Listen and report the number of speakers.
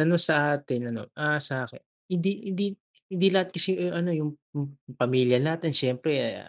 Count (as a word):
one